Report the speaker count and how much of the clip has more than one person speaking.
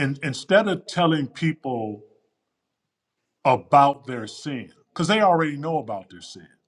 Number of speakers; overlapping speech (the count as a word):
one, no overlap